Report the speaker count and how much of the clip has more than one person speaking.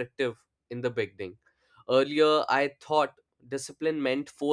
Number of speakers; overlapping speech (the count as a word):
one, no overlap